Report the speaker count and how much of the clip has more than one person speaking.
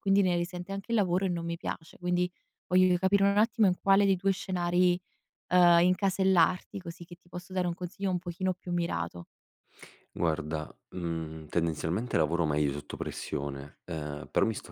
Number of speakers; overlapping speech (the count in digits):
2, no overlap